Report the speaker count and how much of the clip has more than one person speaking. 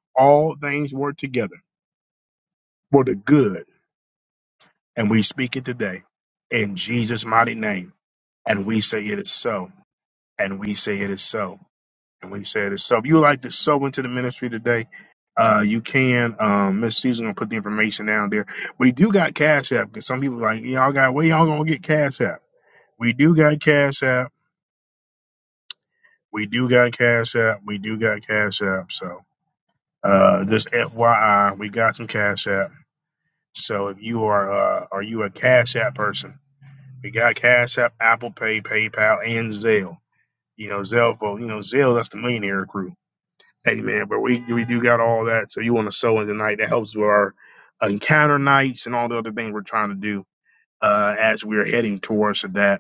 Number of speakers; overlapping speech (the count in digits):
1, no overlap